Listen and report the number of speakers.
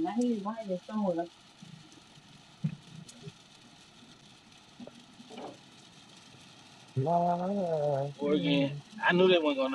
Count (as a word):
three